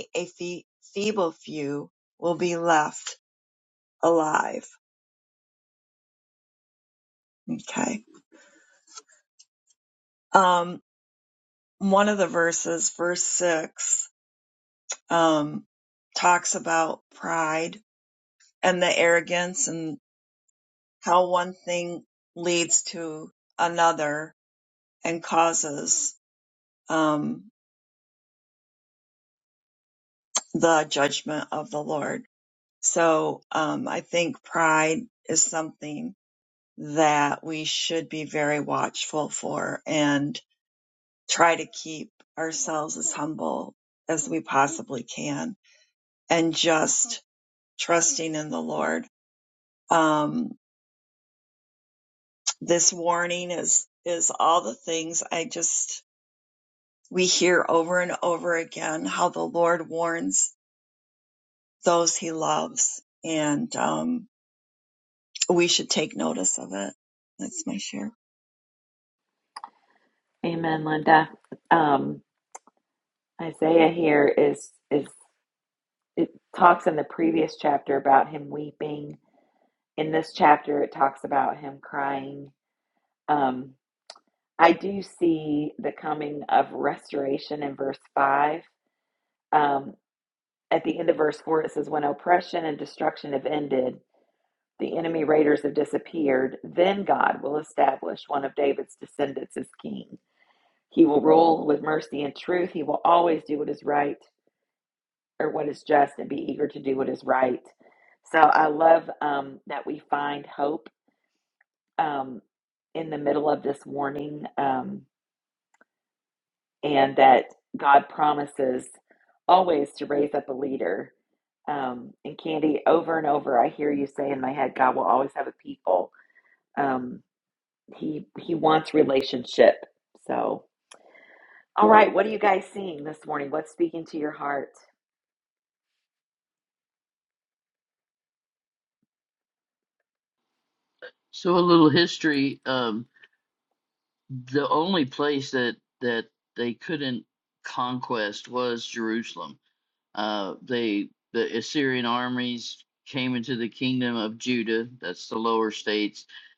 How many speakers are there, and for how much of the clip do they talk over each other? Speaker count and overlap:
3, no overlap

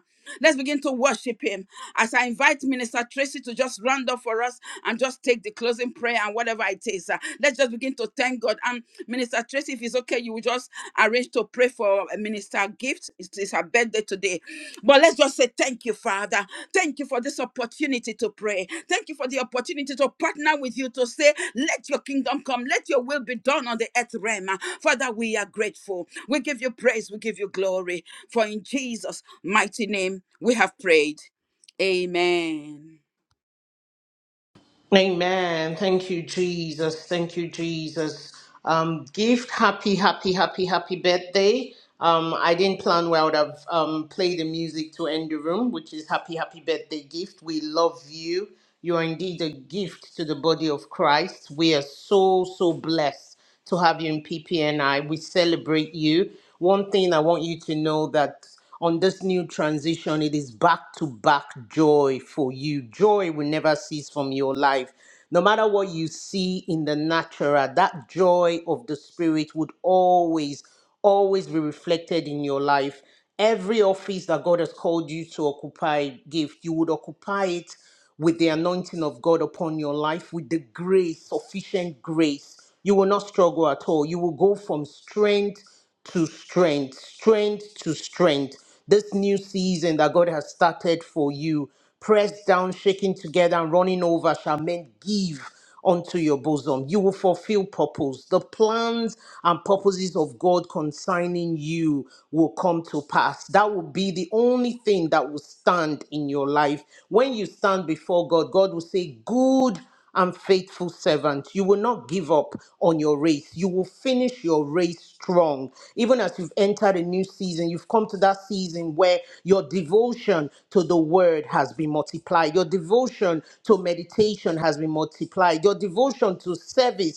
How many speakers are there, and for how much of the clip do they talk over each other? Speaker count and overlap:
2, no overlap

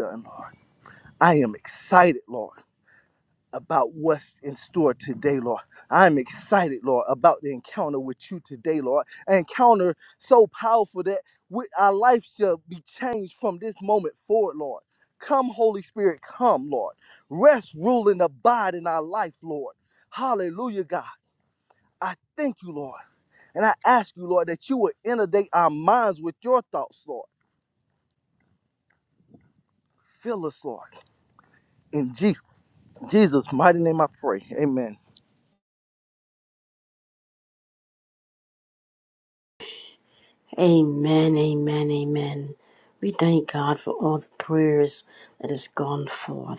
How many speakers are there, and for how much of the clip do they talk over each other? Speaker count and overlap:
2, no overlap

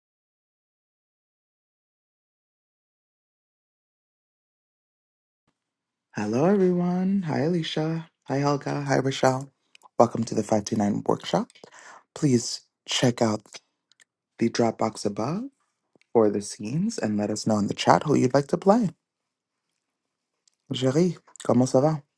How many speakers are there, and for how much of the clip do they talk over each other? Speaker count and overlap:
1, no overlap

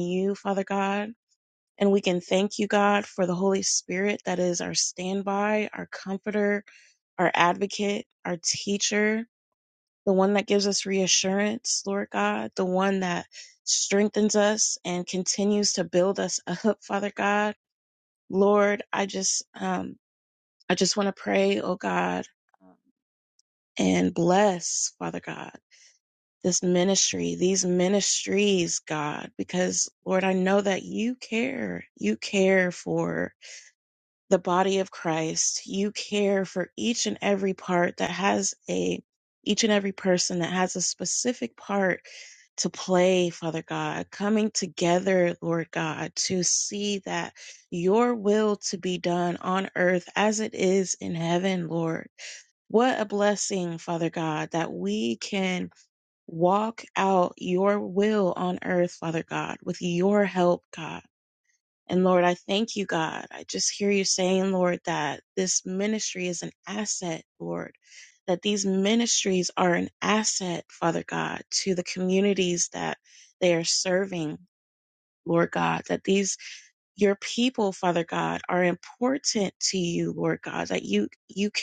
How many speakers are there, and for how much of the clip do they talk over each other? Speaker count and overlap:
1, no overlap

